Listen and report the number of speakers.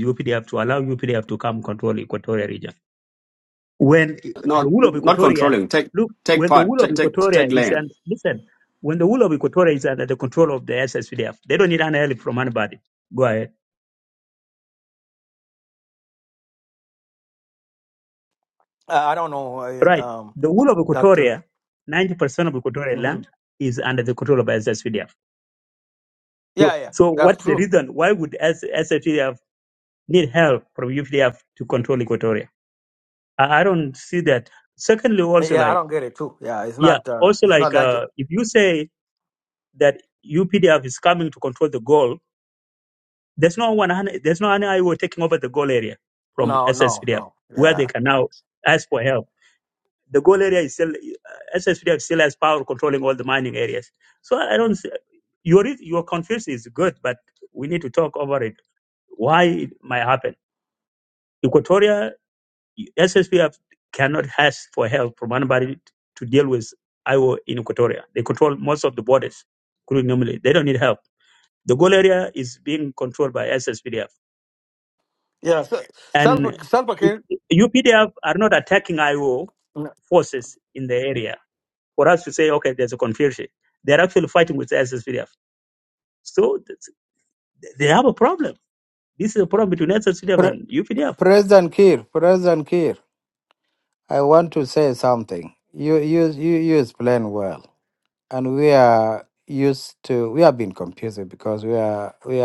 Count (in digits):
4